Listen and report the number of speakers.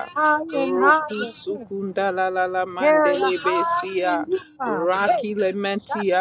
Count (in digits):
2